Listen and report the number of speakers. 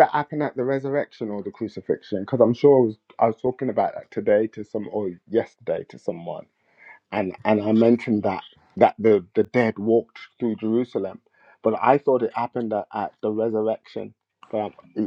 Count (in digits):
1